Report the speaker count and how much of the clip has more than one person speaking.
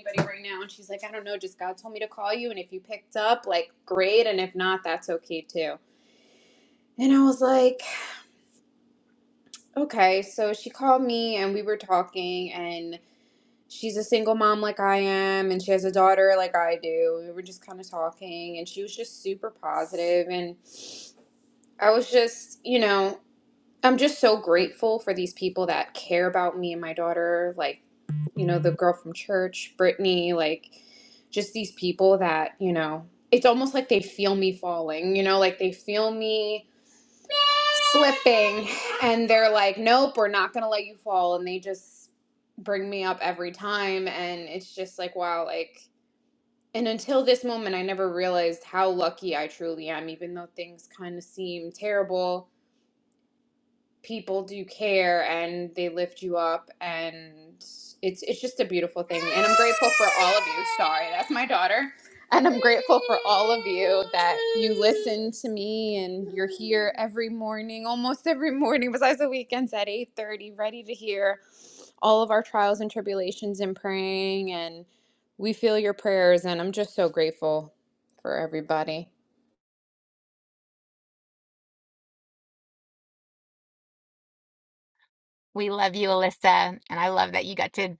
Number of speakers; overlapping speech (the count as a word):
two, no overlap